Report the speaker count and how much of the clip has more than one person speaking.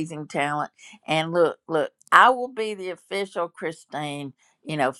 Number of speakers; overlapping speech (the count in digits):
1, no overlap